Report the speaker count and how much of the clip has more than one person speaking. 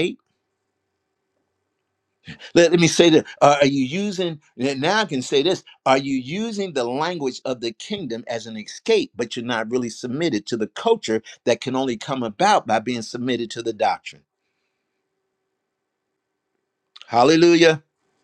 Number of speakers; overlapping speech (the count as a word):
one, no overlap